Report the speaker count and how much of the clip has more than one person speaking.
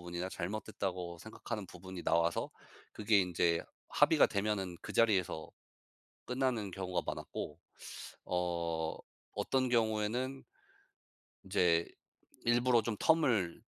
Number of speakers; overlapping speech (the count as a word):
one, no overlap